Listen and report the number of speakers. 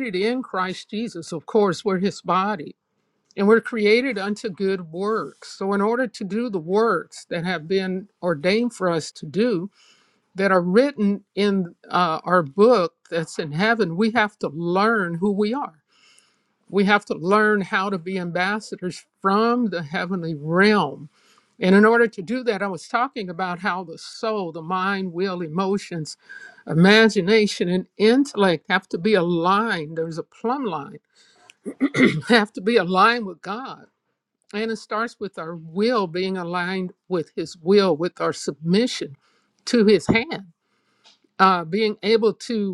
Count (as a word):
one